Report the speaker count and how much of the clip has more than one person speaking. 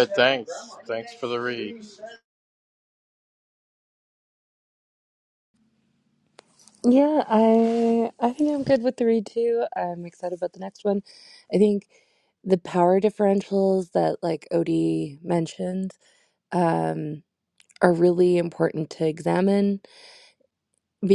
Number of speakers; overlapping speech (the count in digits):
2, no overlap